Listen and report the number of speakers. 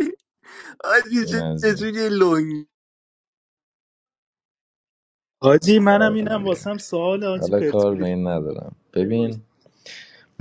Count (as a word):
three